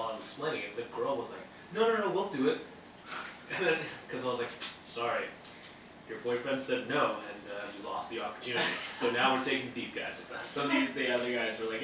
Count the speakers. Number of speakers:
2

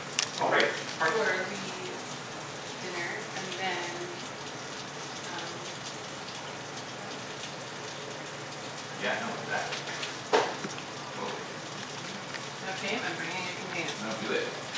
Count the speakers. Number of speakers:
2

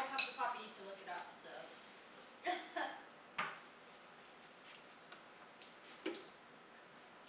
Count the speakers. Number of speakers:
1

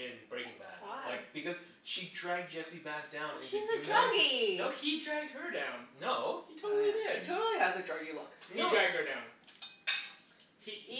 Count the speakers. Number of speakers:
4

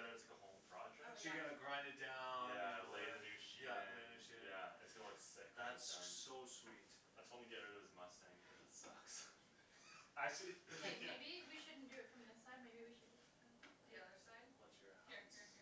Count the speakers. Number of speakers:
4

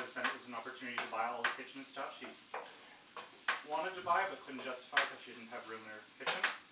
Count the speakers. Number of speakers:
1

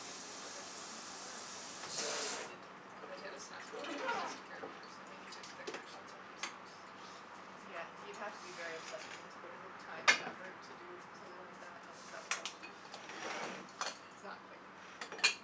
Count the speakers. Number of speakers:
2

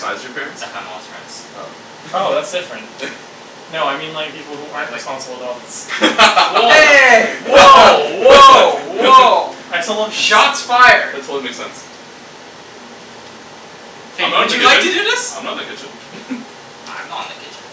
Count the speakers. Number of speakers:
4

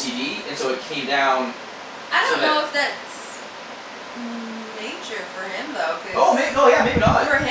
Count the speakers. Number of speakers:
2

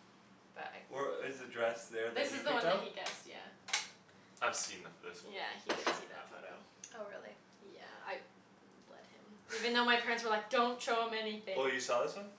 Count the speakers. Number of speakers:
4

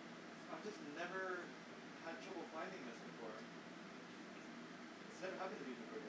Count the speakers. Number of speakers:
1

